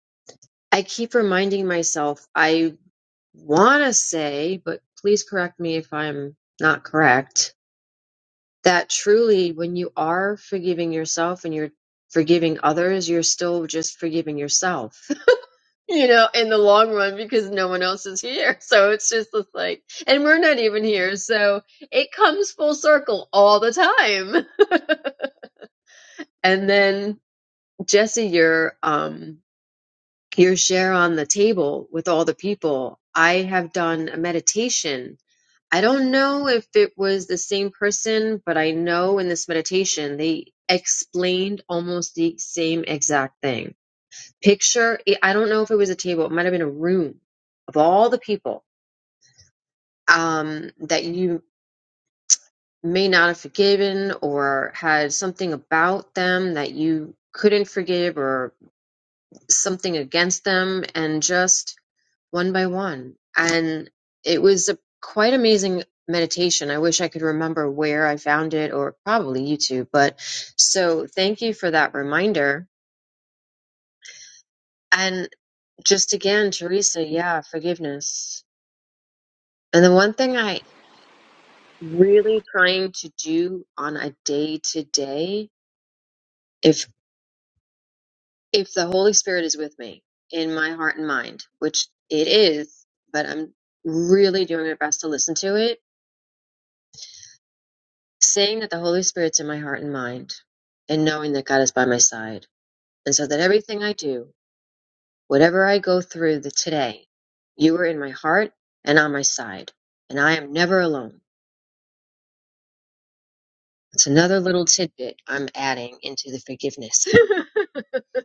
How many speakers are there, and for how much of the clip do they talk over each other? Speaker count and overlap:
one, no overlap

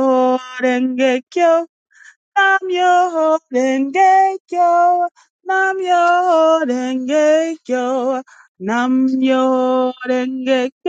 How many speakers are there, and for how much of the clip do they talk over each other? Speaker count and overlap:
one, no overlap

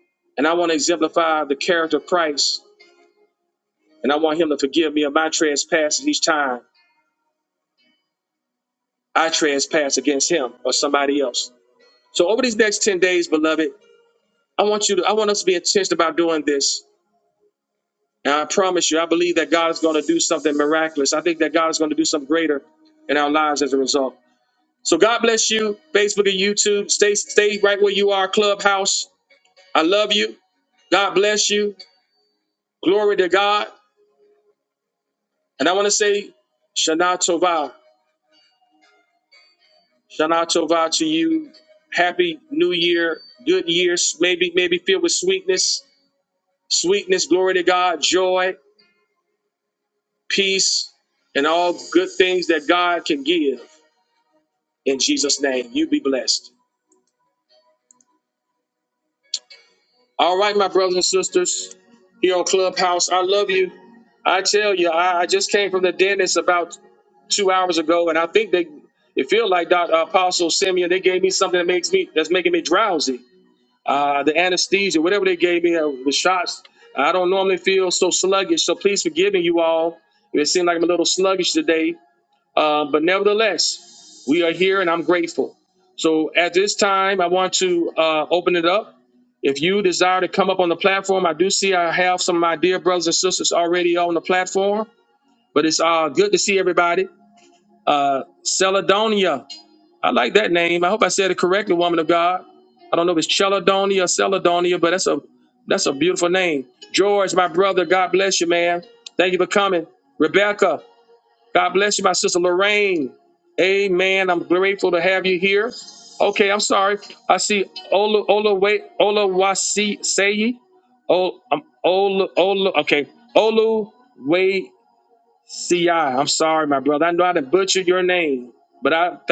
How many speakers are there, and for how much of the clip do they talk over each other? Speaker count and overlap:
one, no overlap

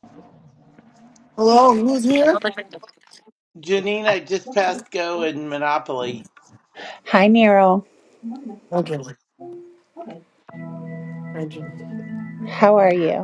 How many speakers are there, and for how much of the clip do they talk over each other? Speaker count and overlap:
three, no overlap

